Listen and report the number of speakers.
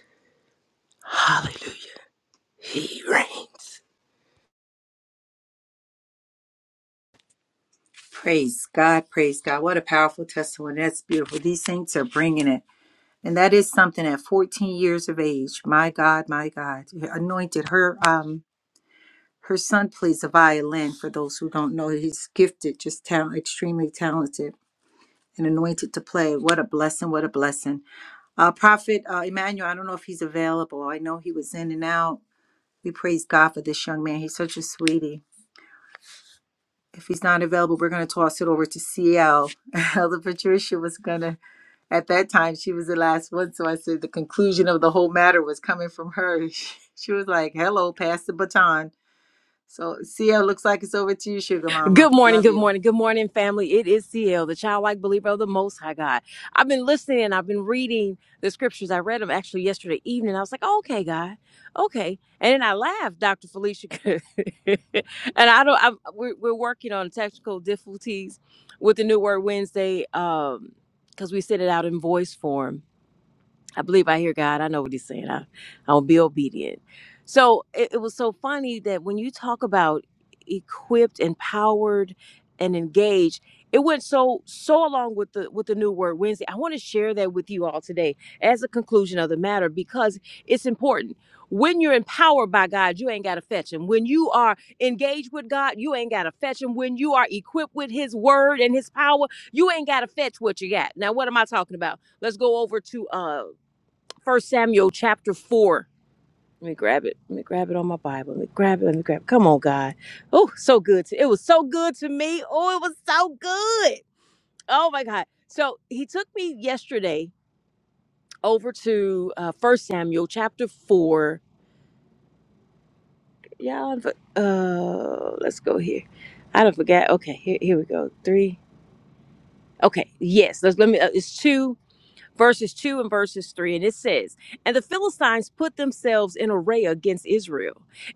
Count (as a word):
three